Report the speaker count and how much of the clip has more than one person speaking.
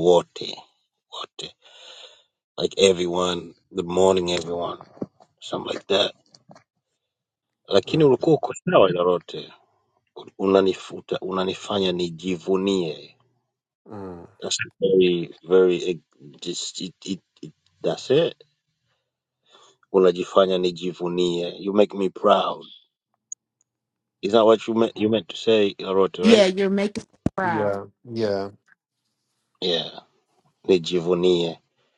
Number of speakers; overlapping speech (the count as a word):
three, about 3%